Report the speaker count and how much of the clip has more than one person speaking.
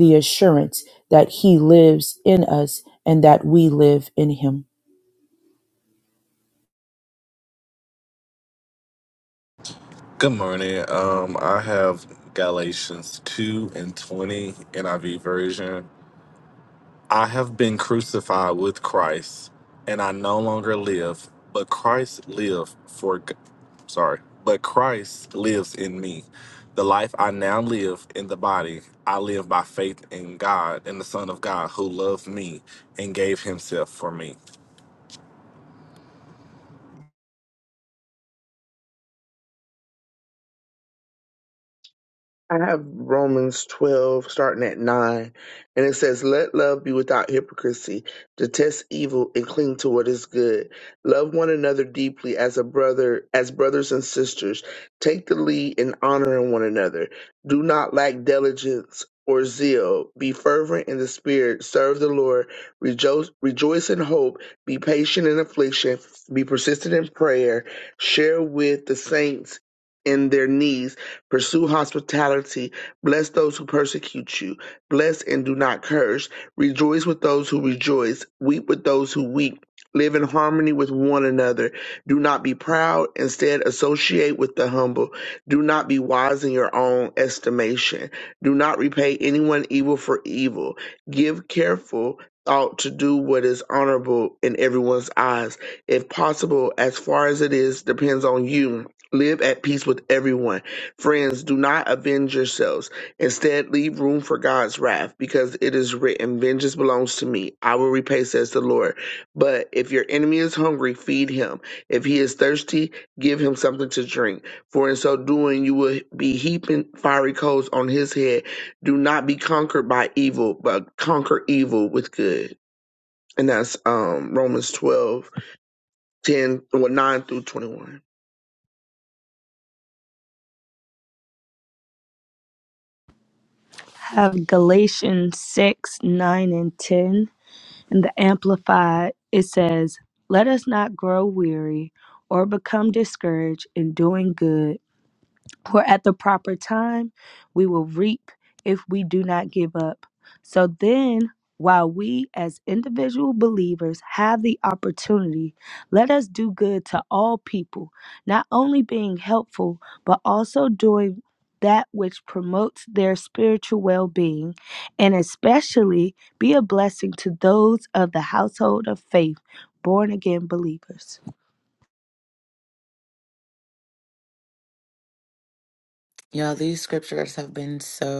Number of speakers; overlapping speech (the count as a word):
five, no overlap